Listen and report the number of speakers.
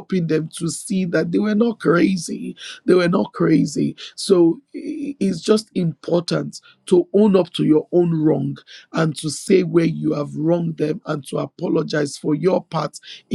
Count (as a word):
one